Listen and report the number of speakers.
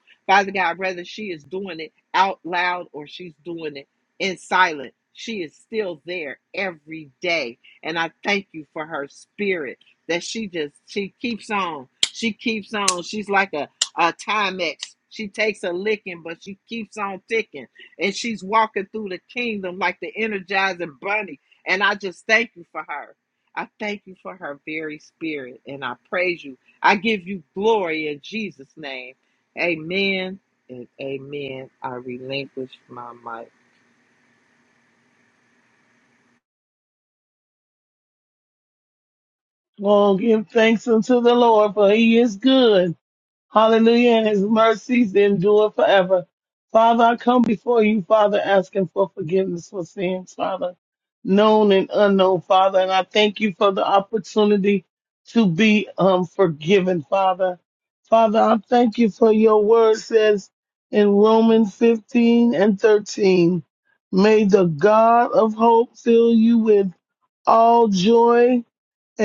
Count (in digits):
2